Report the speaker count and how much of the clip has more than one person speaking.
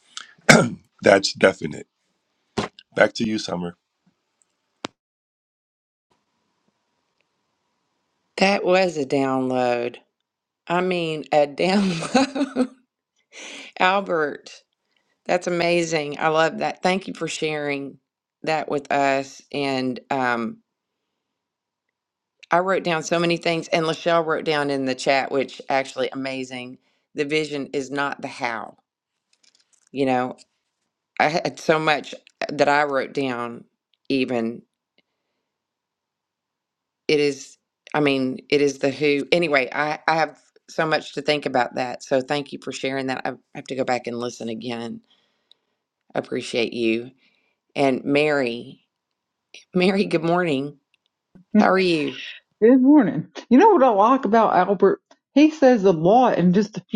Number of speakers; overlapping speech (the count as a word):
three, no overlap